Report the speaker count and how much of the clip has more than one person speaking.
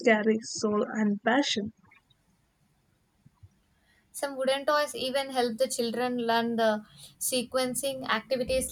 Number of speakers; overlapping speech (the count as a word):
two, no overlap